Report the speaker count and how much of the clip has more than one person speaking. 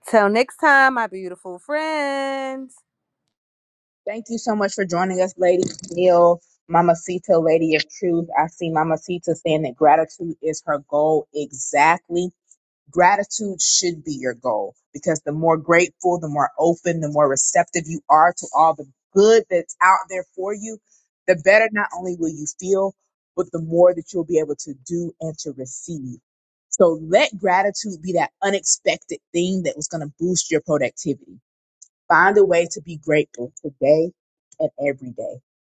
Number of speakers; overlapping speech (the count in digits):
2, no overlap